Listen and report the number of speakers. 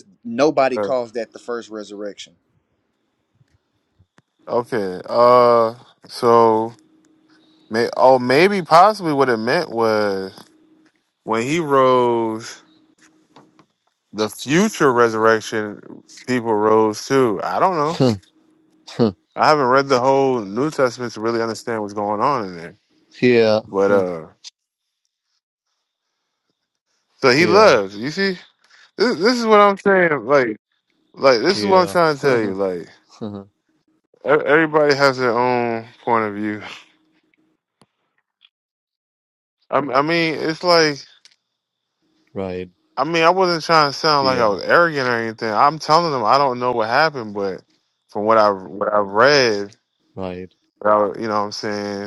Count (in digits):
3